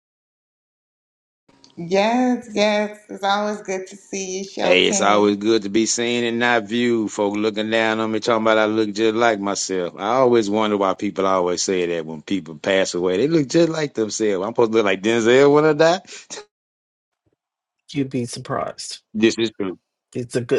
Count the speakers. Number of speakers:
3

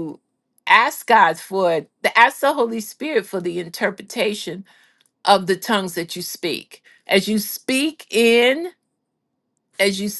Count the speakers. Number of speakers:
1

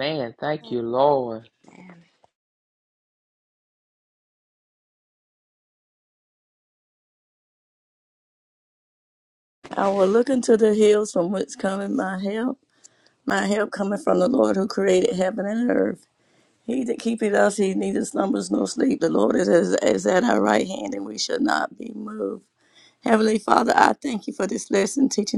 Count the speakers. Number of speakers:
2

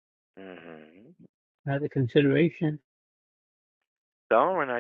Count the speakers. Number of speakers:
2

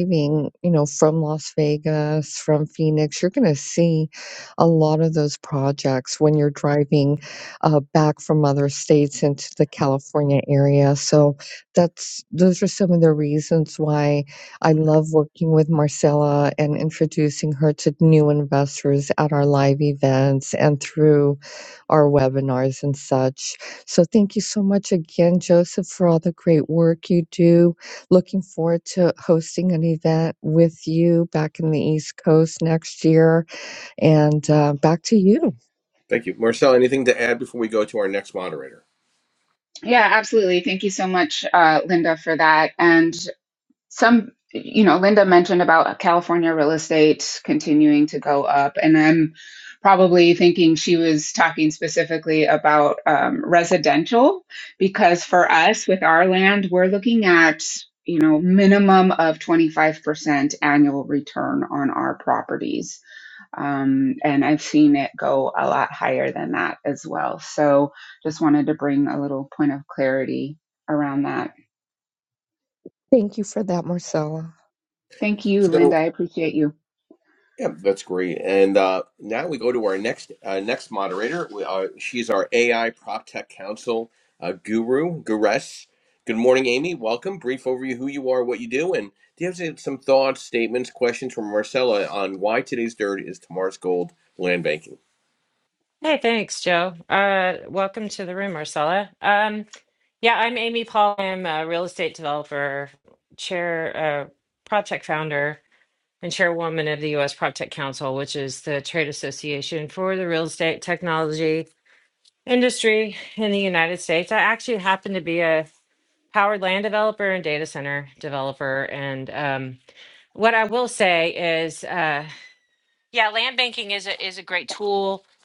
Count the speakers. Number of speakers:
4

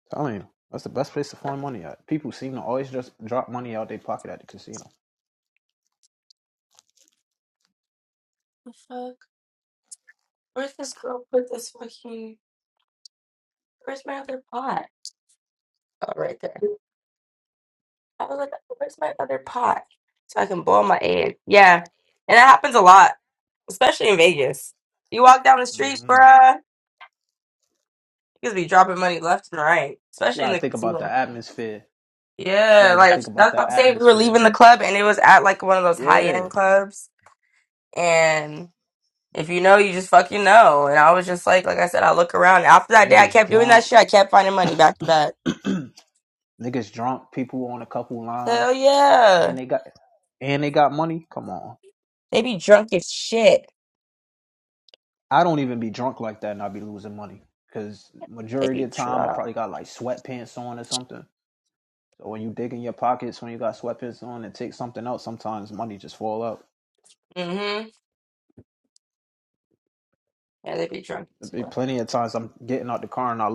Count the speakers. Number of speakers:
2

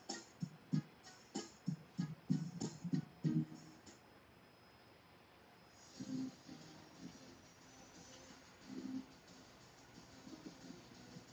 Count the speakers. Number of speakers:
0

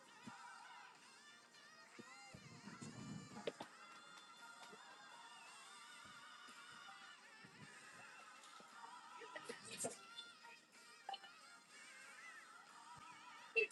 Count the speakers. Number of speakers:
0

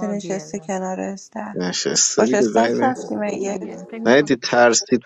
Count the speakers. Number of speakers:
3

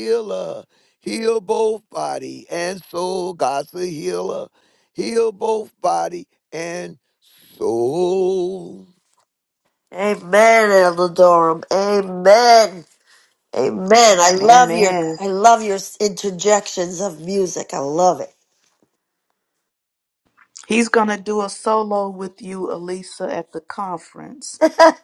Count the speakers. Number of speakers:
3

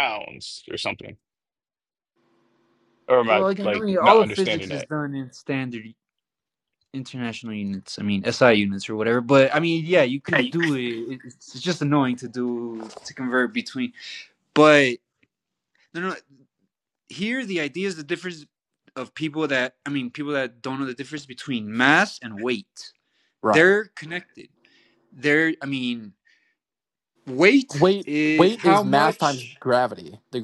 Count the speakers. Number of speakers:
3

